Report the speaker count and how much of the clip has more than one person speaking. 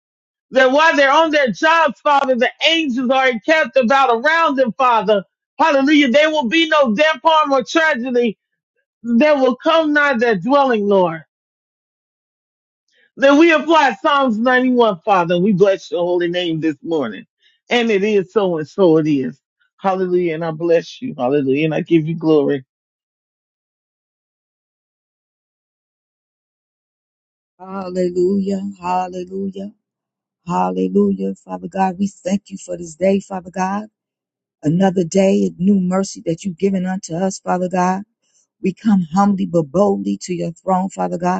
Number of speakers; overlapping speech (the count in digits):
2, no overlap